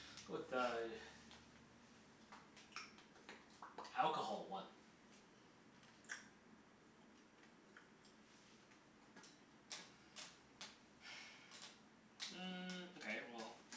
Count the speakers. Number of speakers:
two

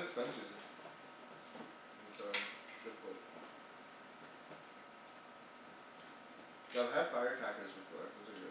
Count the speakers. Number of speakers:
one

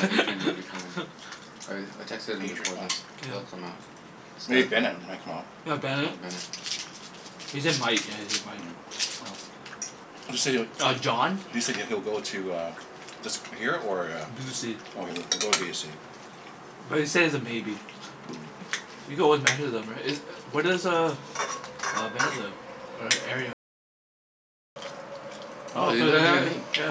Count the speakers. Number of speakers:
three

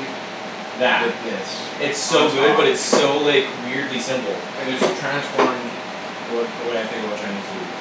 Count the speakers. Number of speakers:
two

